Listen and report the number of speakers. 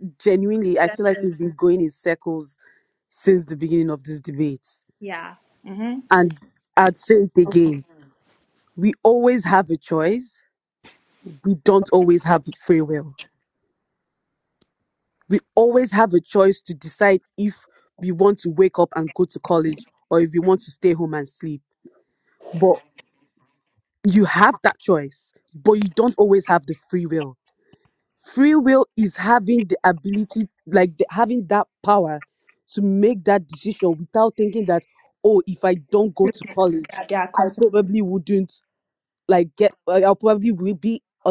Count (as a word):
two